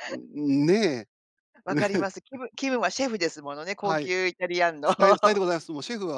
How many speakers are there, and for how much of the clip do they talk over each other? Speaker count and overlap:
two, about 5%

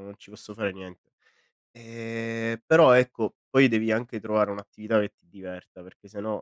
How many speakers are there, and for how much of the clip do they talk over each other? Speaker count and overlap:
one, no overlap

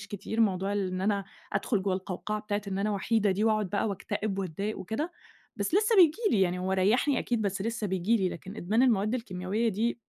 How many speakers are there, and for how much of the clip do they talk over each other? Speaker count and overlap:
one, no overlap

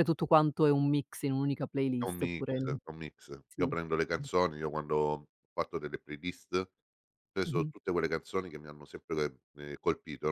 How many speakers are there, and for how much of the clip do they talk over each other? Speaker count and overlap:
two, about 11%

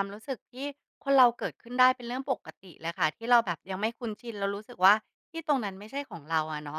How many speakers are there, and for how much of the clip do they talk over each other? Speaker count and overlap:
one, no overlap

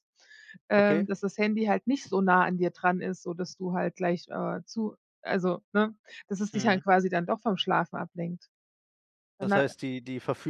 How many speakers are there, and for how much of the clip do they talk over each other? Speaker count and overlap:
two, about 5%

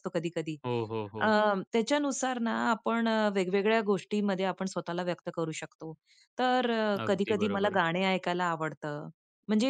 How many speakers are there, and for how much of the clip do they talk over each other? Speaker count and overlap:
two, about 10%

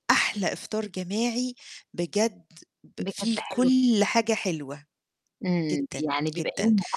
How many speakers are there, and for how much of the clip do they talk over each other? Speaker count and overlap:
two, about 27%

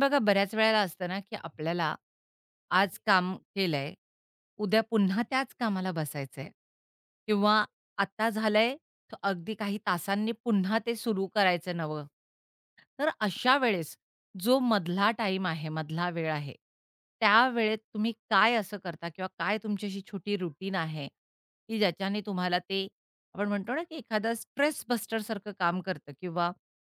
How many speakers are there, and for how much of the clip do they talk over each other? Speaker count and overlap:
one, no overlap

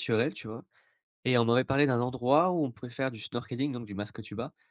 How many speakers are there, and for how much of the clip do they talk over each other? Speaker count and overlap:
one, no overlap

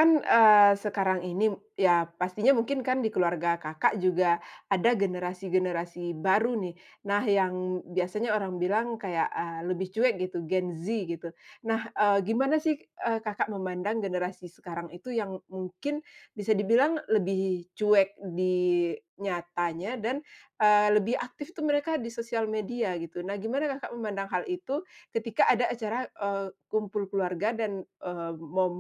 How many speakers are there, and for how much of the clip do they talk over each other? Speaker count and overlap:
one, no overlap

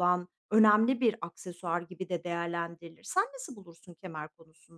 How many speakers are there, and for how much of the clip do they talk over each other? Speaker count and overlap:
one, no overlap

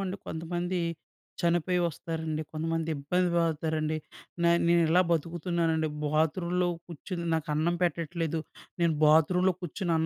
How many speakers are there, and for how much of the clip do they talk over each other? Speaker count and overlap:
one, no overlap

